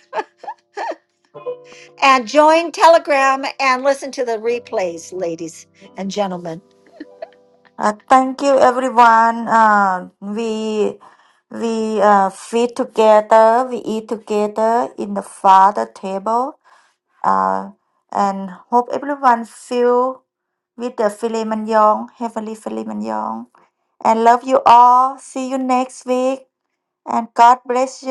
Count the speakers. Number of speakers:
2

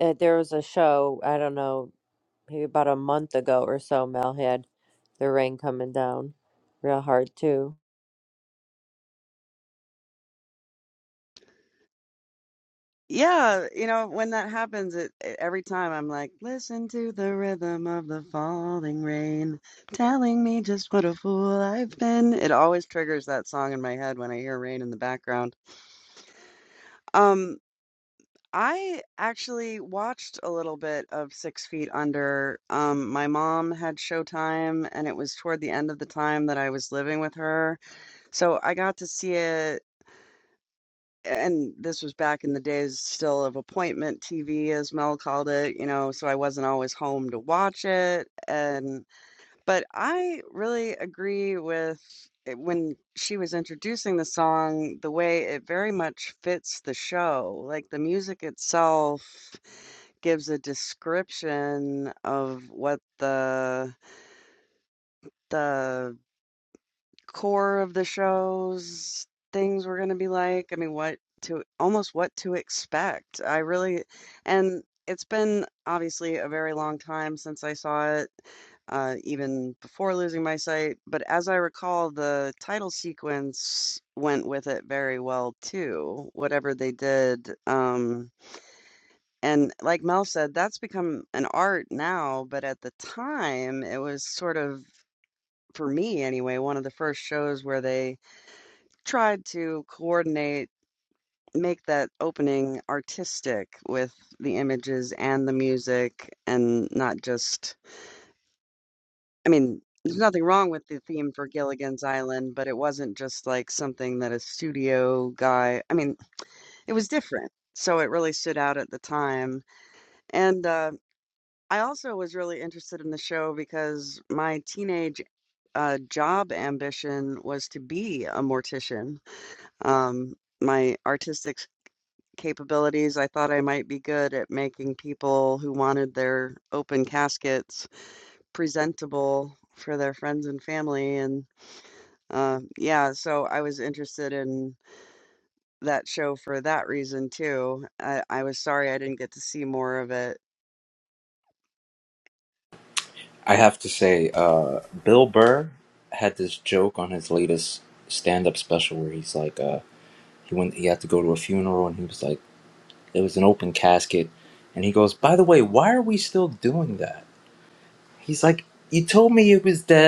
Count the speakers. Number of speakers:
3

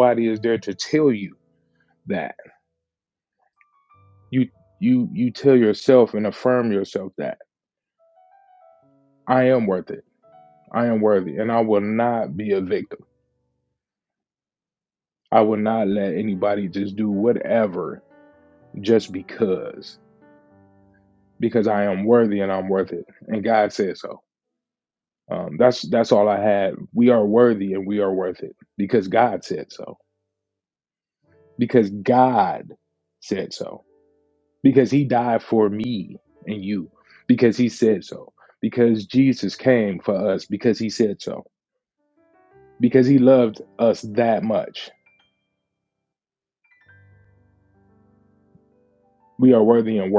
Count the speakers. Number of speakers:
1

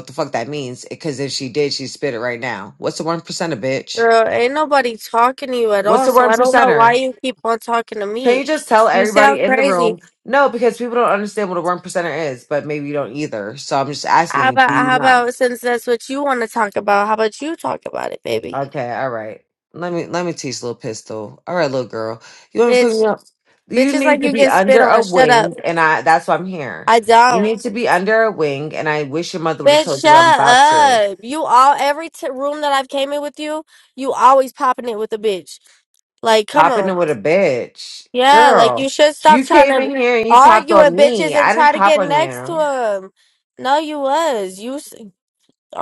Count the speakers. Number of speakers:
2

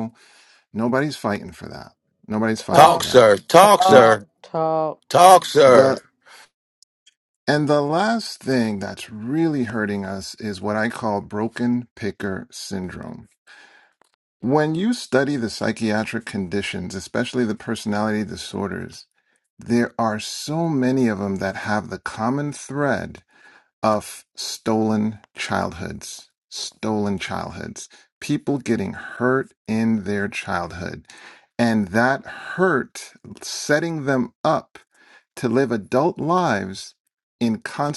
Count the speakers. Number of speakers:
3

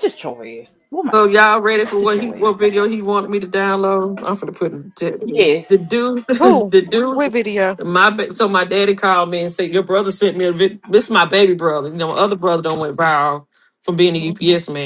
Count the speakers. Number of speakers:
3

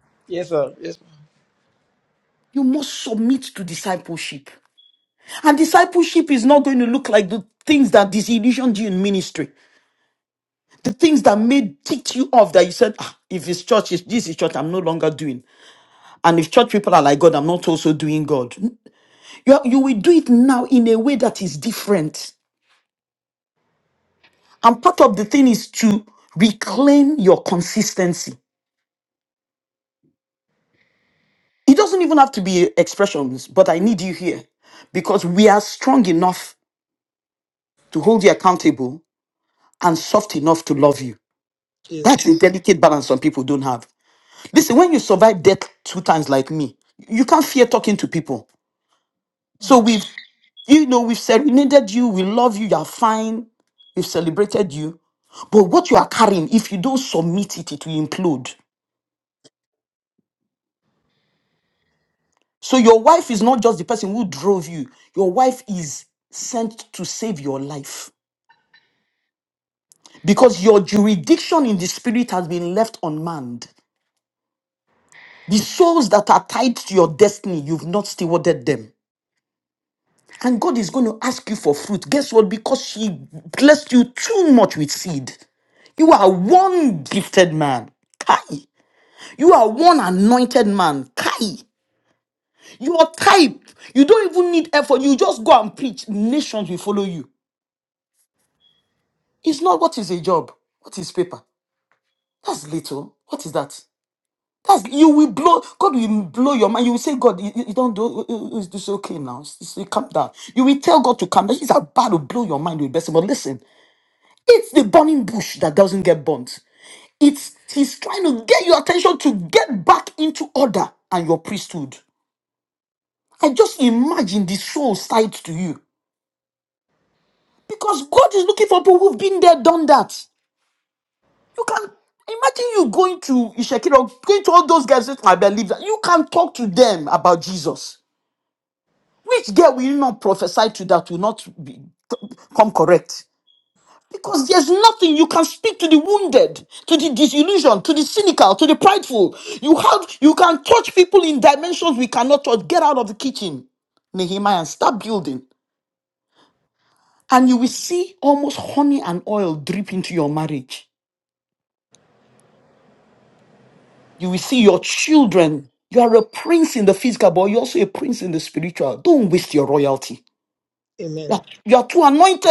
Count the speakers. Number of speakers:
2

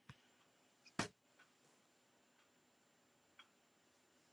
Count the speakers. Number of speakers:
0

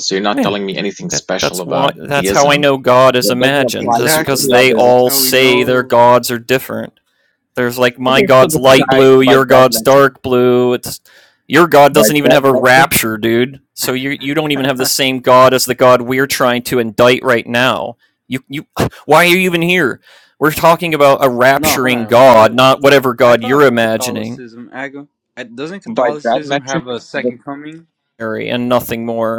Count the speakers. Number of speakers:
3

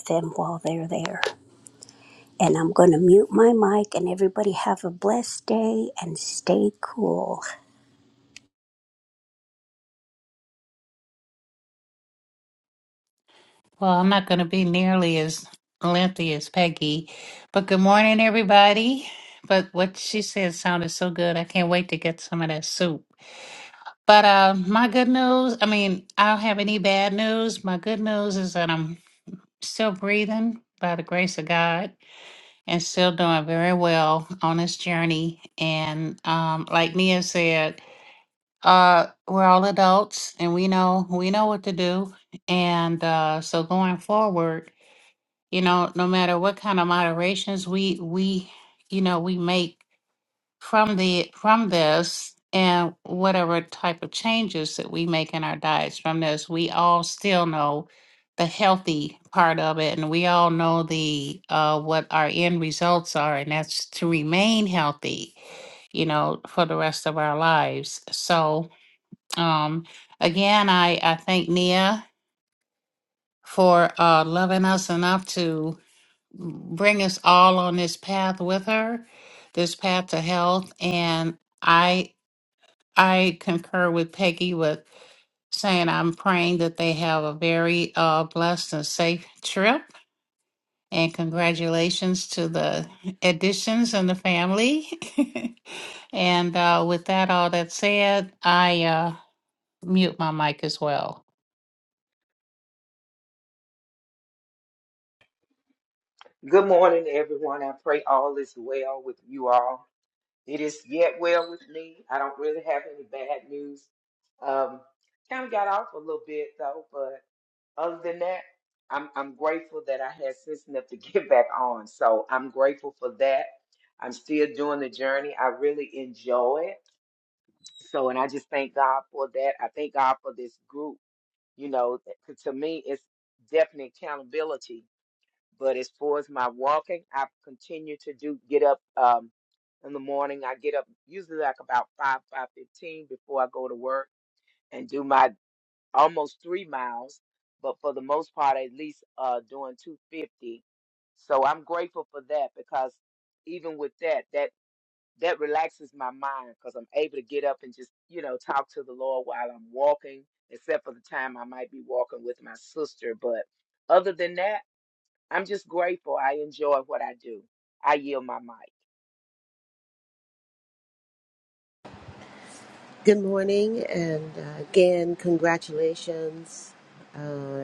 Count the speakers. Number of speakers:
4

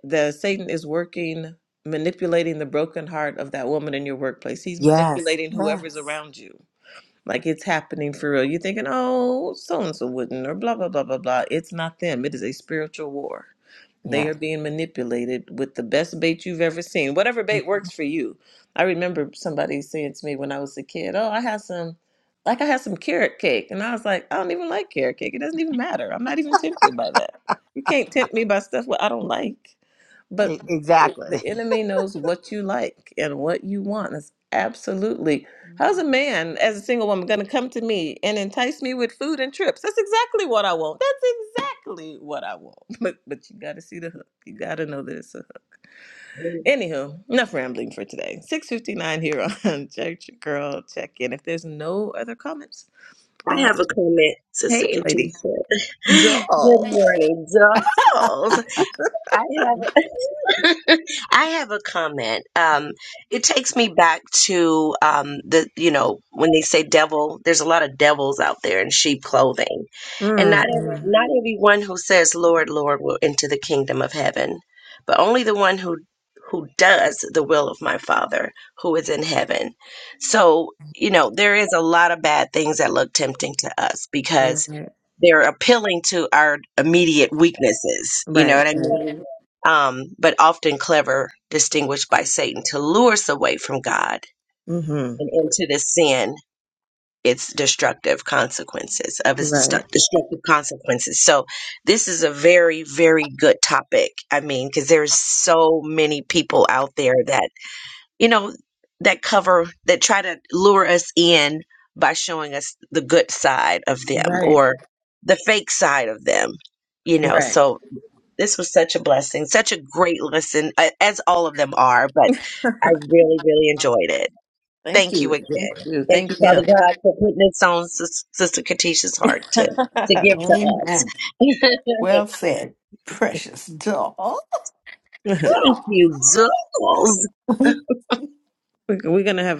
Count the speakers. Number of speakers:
4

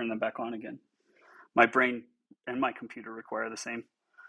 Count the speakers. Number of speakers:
1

